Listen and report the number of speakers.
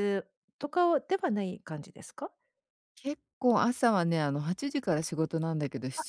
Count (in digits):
2